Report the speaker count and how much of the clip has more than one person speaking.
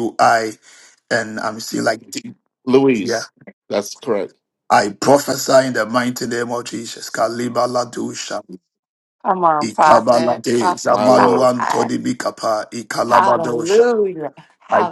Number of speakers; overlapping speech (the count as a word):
three, about 19%